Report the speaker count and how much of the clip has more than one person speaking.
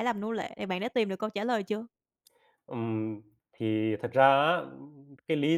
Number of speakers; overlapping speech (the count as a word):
two, no overlap